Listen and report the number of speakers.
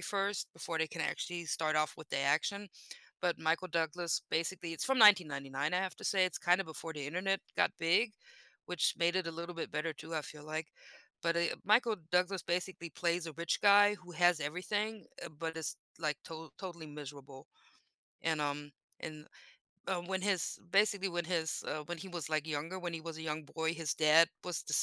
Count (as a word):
one